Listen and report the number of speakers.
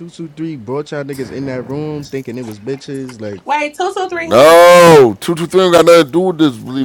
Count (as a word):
three